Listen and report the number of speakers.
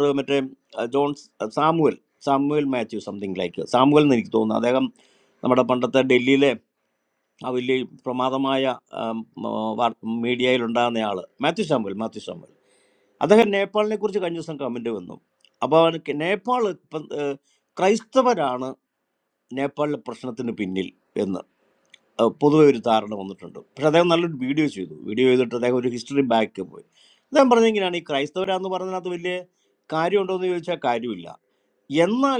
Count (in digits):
1